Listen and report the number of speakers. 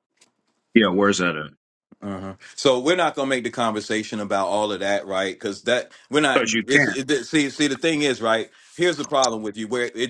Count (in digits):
2